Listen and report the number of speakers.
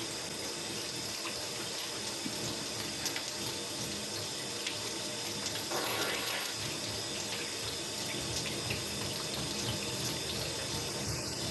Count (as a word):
zero